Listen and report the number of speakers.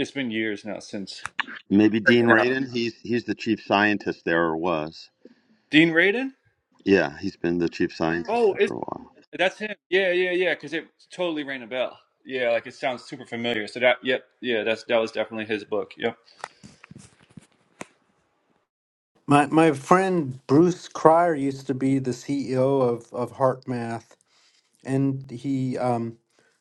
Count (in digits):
3